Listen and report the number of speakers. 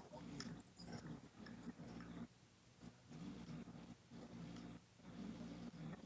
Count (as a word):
zero